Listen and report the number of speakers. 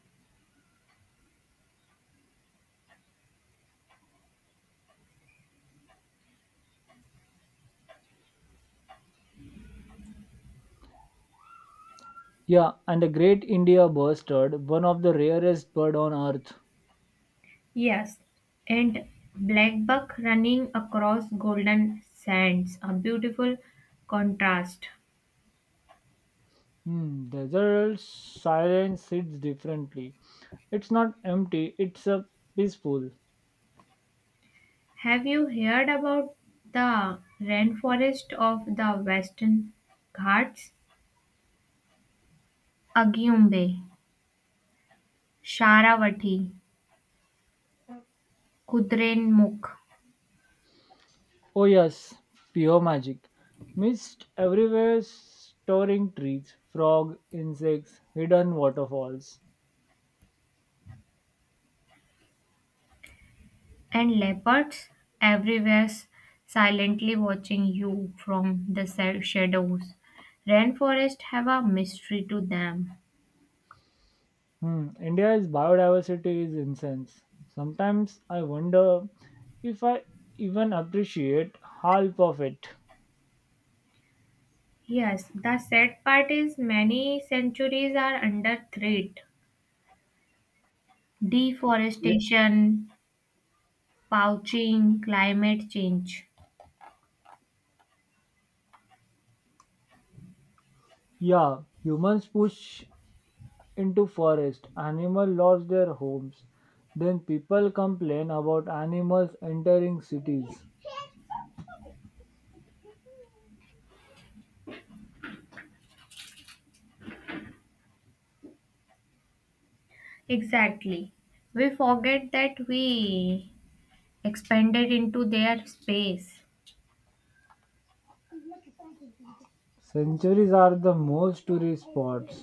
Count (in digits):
2